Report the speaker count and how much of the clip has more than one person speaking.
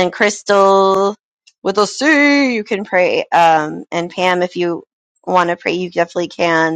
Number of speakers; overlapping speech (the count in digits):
1, no overlap